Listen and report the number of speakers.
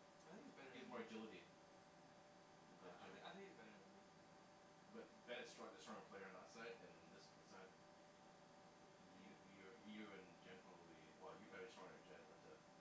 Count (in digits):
2